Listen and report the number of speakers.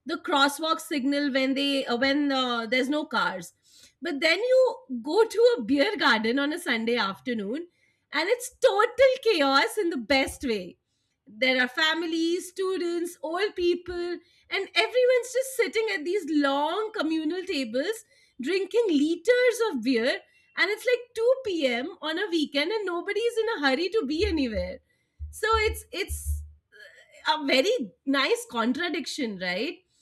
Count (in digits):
1